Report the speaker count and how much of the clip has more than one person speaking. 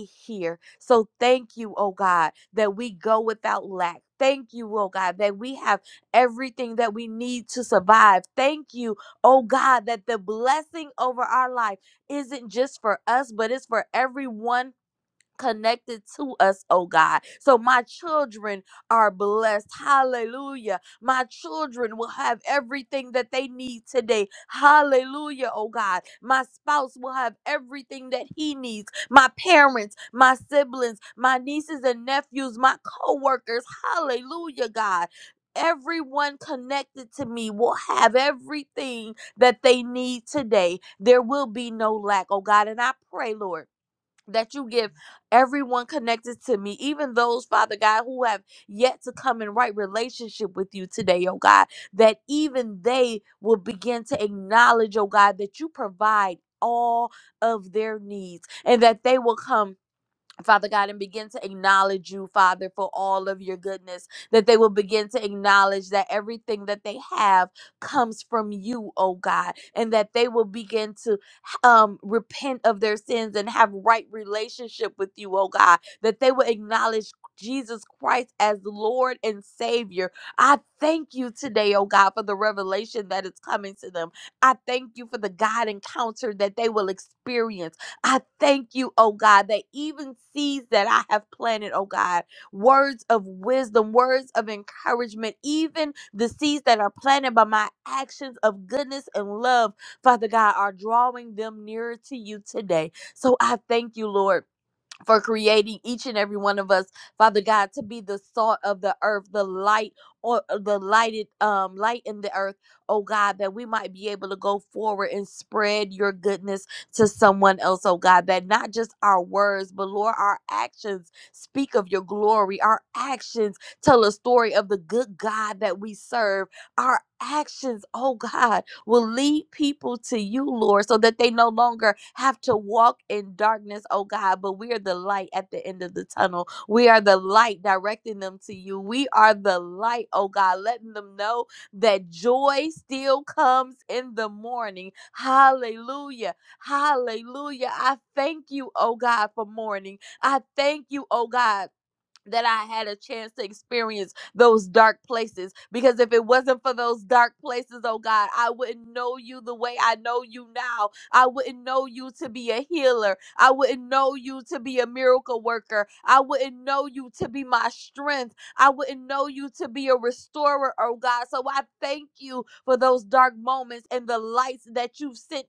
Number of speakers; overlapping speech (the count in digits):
1, no overlap